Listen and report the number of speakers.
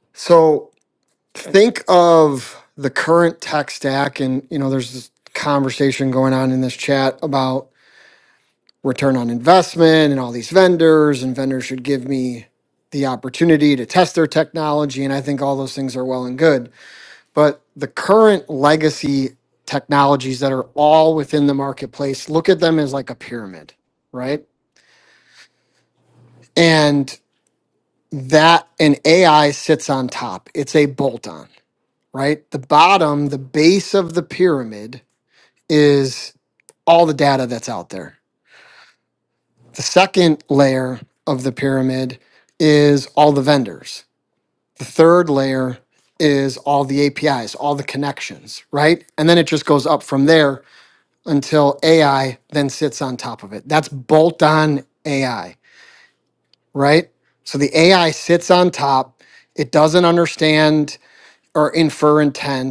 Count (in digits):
1